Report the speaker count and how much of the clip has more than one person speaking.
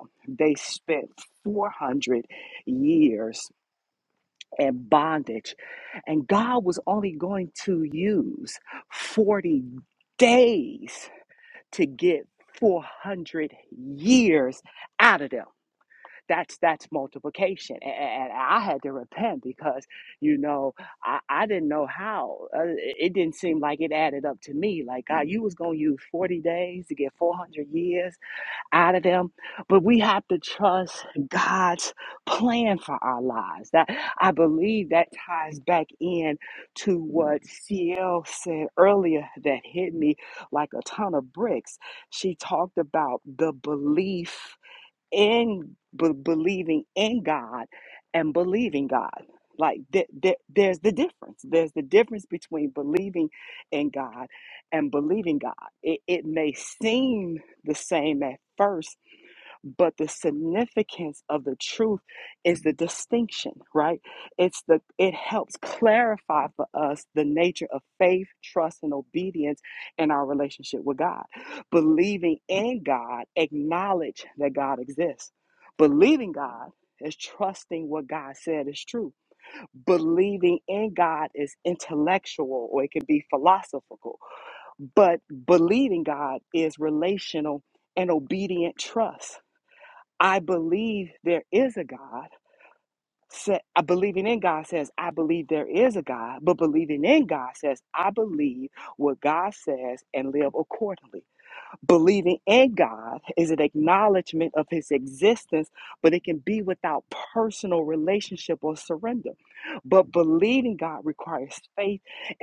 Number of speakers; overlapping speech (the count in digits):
1, no overlap